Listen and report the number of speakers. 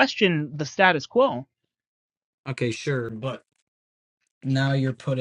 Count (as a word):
two